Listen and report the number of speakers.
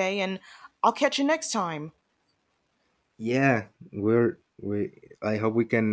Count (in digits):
2